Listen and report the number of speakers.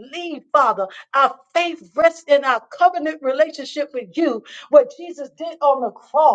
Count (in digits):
1